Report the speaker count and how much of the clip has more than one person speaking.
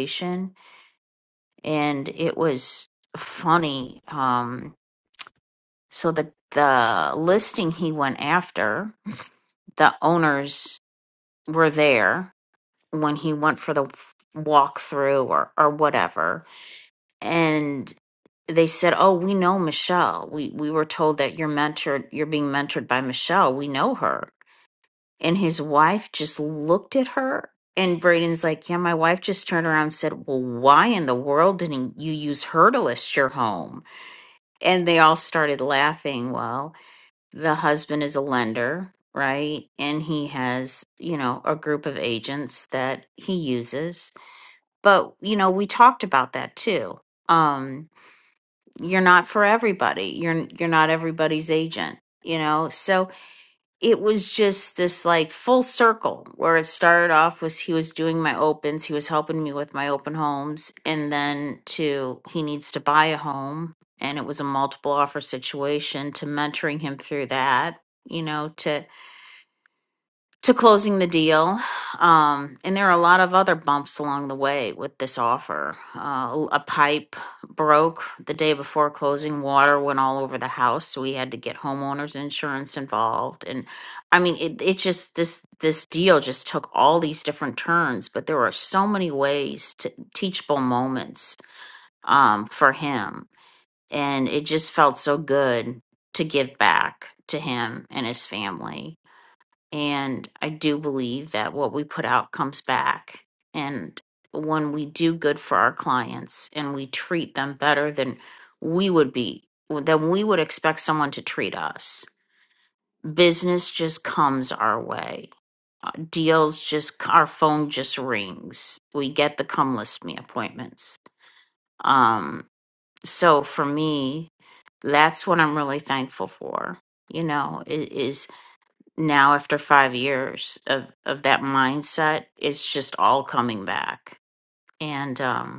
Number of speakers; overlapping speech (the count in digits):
1, no overlap